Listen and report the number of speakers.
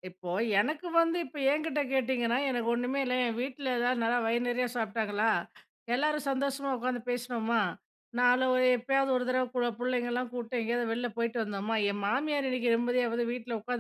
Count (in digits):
1